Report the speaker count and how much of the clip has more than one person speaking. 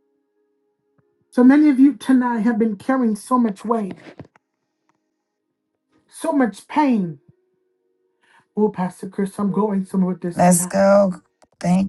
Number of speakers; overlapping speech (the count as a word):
two, about 3%